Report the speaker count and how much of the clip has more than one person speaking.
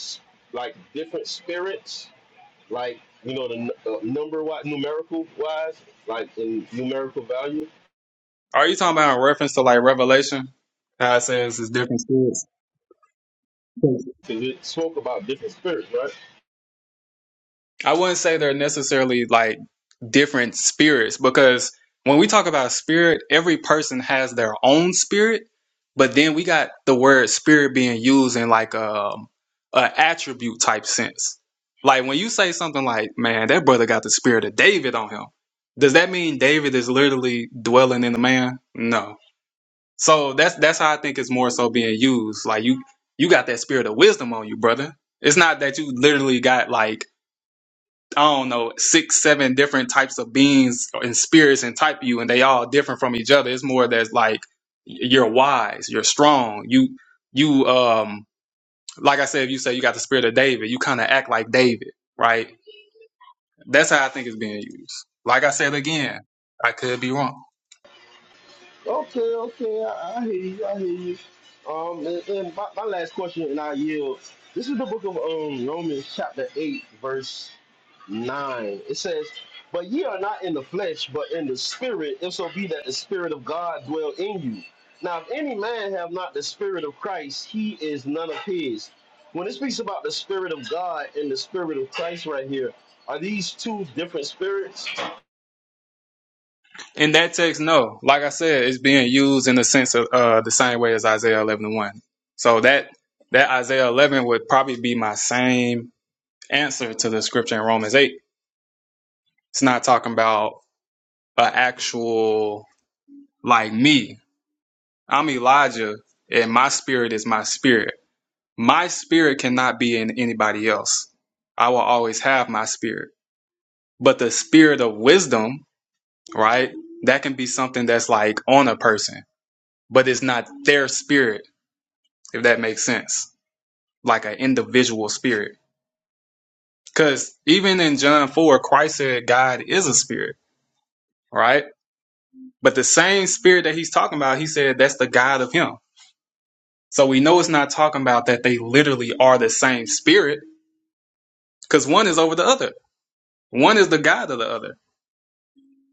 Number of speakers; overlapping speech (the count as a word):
two, no overlap